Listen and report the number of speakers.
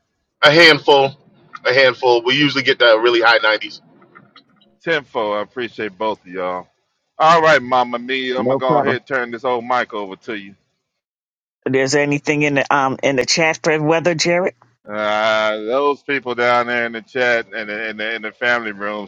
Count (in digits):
3